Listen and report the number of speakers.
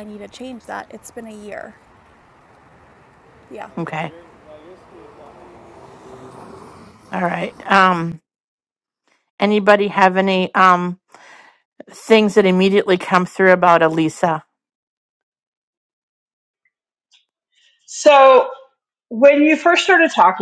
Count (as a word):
three